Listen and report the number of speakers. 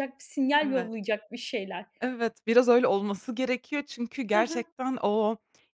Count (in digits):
2